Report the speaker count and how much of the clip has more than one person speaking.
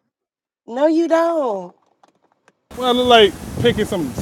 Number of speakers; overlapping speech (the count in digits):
2, no overlap